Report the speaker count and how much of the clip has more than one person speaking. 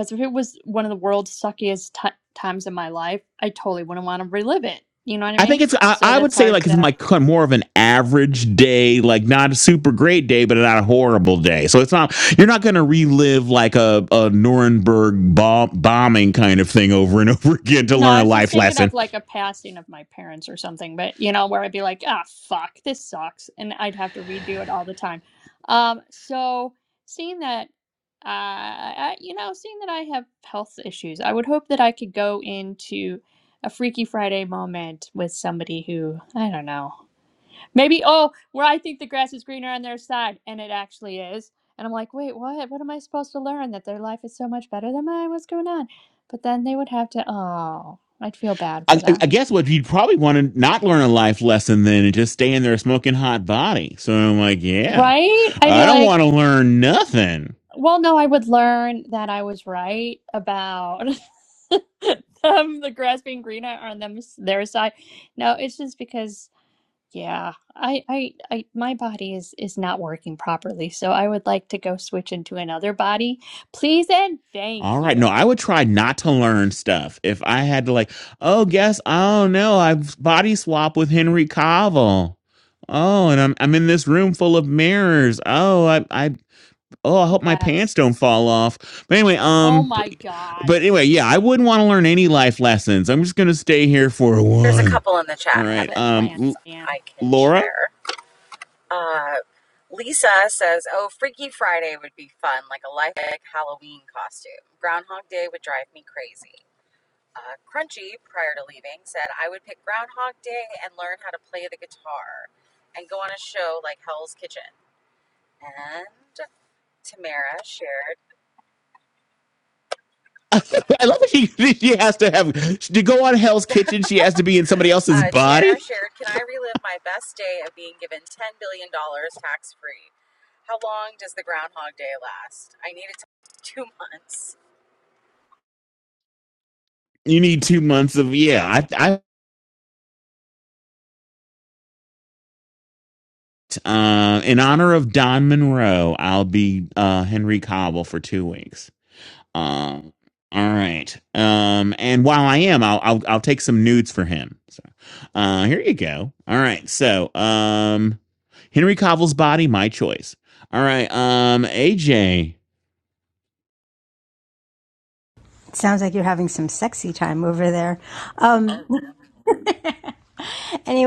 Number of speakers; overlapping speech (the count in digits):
4, about 4%